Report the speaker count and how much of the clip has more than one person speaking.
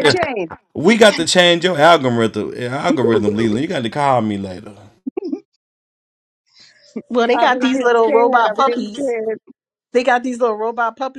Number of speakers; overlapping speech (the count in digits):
3, about 17%